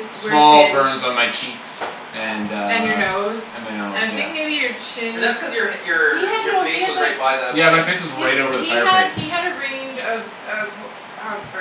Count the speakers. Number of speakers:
three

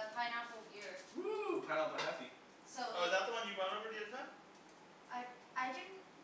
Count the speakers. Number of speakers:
three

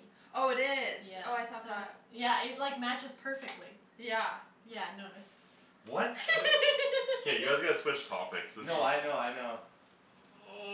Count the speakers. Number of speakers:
four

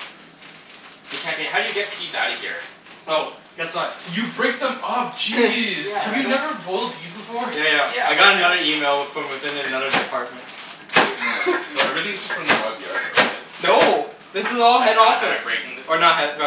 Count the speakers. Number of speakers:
three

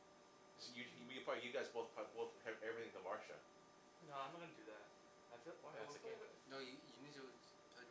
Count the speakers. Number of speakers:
three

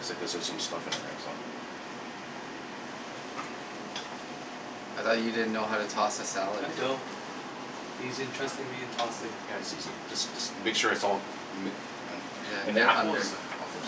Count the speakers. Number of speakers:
three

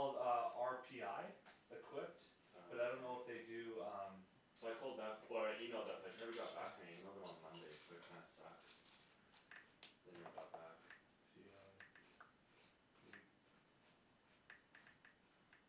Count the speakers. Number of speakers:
two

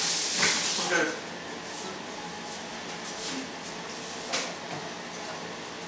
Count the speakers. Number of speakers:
zero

